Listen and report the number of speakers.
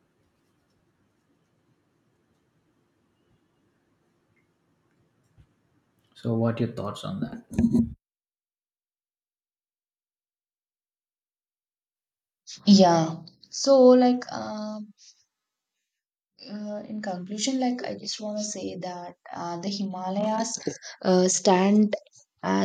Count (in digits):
2